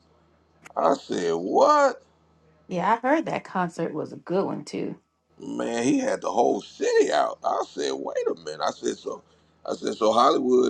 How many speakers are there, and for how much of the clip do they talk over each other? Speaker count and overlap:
2, no overlap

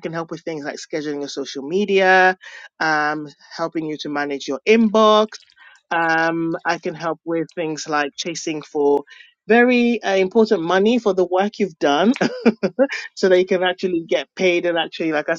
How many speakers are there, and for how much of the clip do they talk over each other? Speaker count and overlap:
1, no overlap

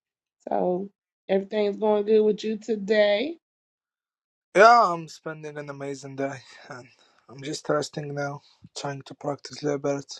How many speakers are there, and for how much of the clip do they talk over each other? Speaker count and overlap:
2, no overlap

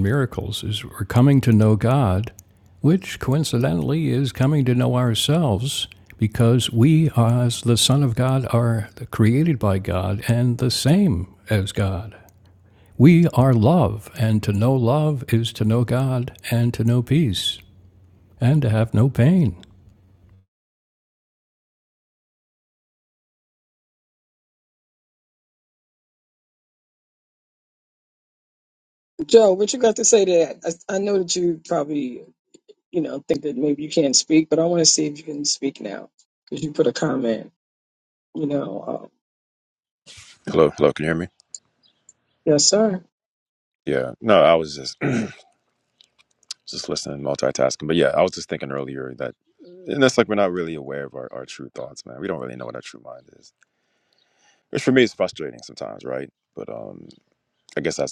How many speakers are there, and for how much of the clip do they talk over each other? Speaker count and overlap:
3, no overlap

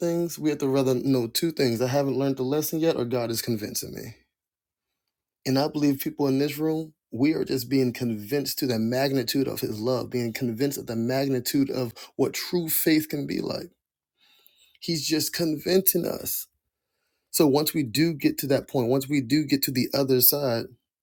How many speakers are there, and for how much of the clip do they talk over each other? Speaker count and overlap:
1, no overlap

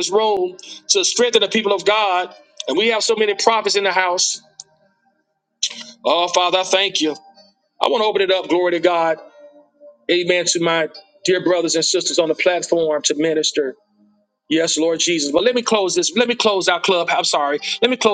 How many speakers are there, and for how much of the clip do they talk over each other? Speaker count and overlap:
1, no overlap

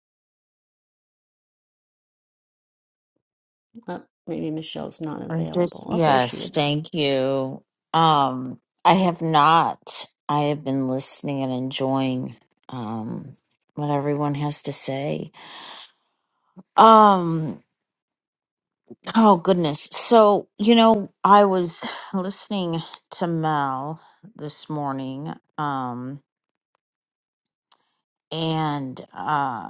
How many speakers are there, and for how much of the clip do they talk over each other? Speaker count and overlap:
2, about 4%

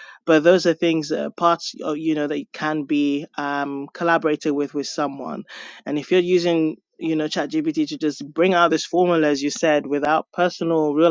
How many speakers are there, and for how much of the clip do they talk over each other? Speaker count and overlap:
1, no overlap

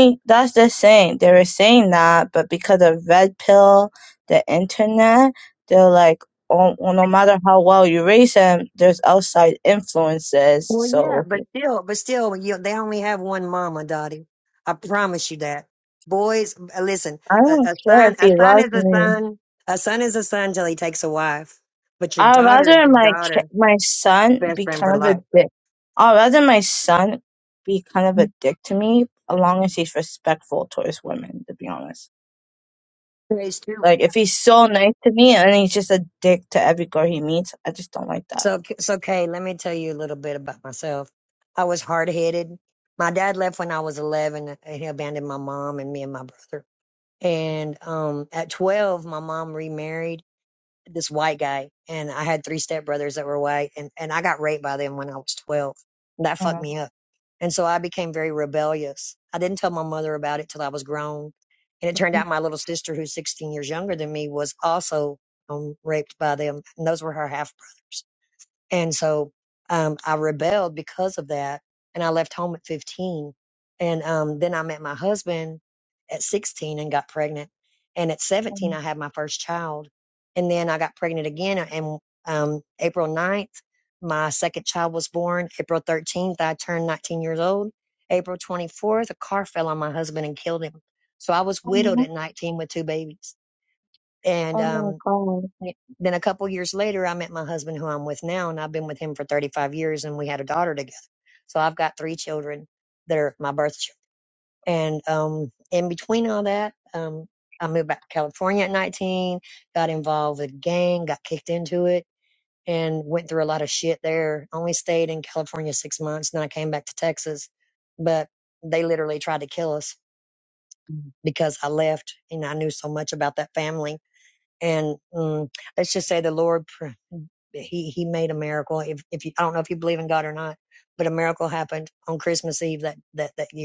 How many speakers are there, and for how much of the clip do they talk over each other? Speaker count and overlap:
2, about 4%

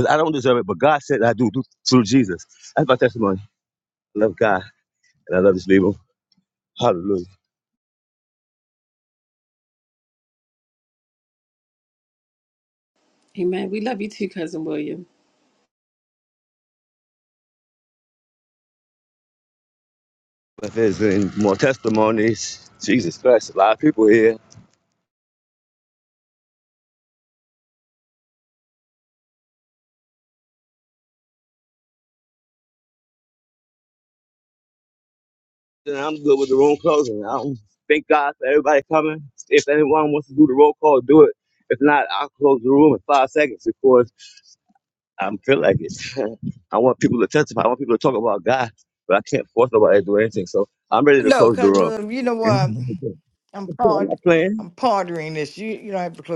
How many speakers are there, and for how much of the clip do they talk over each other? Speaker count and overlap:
3, about 2%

